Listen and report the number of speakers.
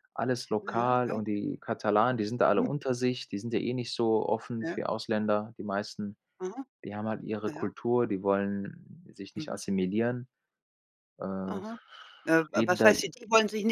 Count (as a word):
two